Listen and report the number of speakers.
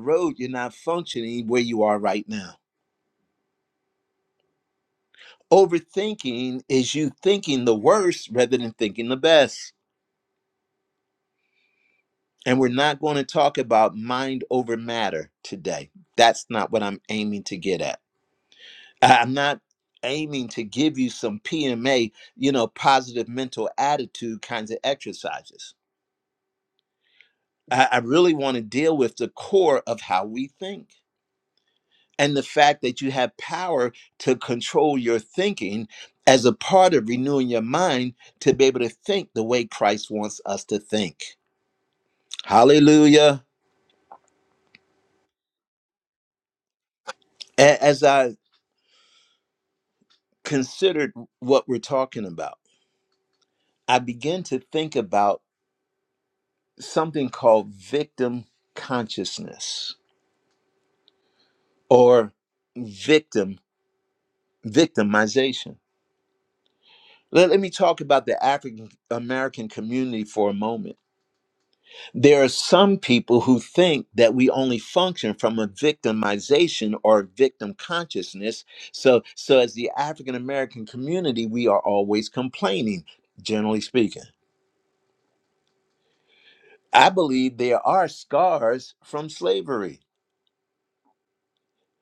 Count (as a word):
one